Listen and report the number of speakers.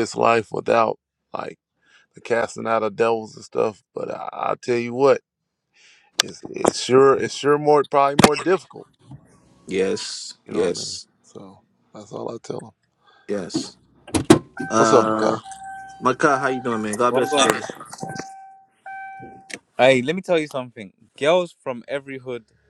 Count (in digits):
3